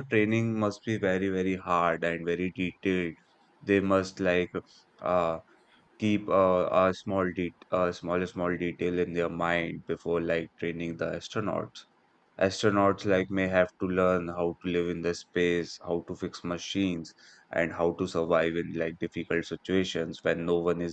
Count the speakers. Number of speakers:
one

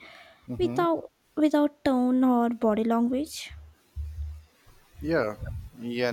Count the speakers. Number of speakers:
two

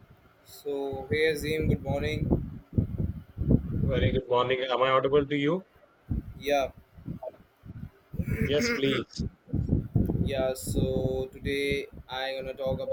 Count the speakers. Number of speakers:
two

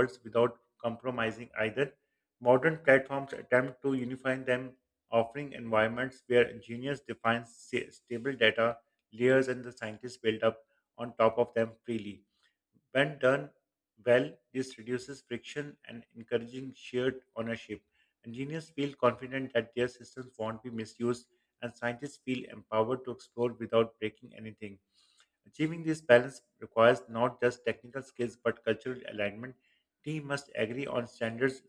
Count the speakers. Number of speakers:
one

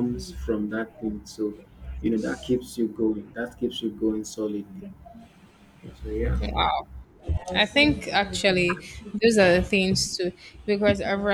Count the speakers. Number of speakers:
two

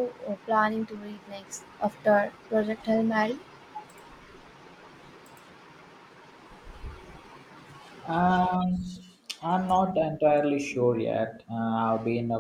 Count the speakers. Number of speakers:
two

